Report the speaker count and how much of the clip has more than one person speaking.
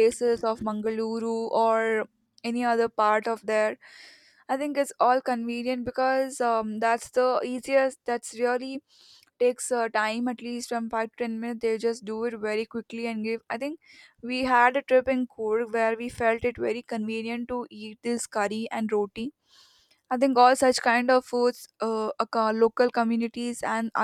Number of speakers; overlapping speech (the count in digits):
1, no overlap